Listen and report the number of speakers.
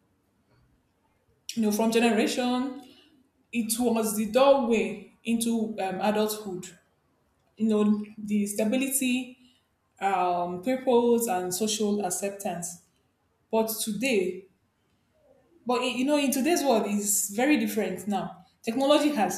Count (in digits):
1